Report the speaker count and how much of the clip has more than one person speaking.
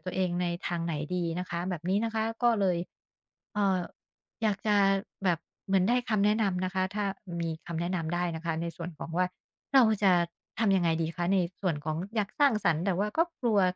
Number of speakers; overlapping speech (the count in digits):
1, no overlap